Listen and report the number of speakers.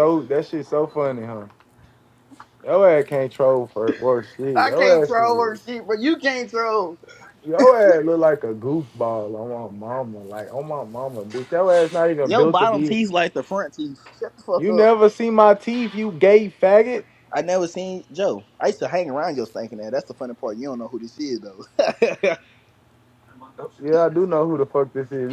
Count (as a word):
two